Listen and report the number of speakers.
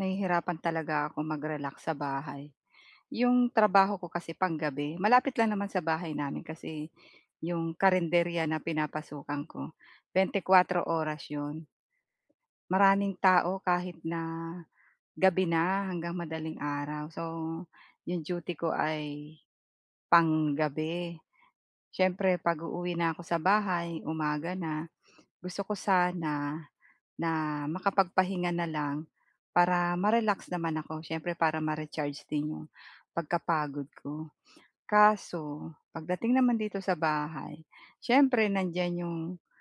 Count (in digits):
1